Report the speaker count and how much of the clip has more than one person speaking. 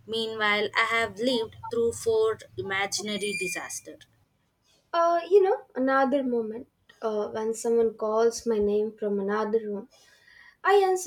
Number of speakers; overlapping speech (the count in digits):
2, no overlap